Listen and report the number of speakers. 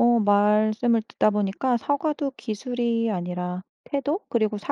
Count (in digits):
1